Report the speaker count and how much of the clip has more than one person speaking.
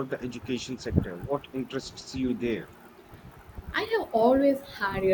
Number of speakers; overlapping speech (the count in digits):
2, no overlap